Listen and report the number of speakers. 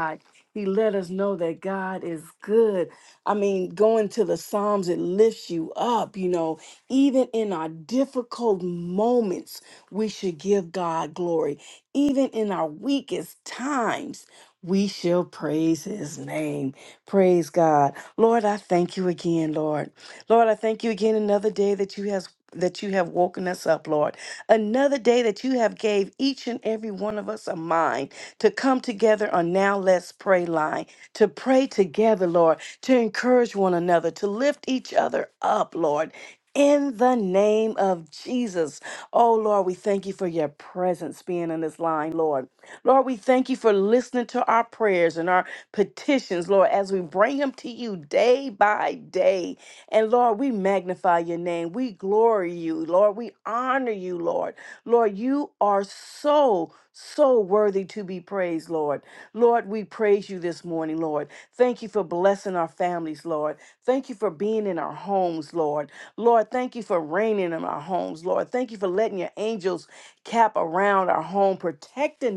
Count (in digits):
1